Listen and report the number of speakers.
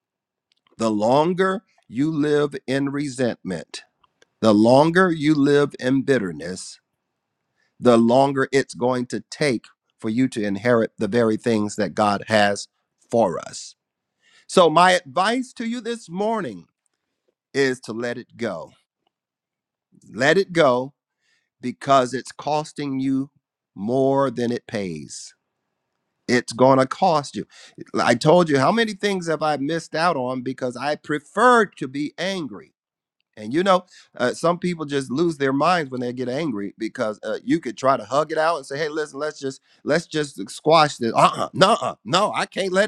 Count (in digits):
1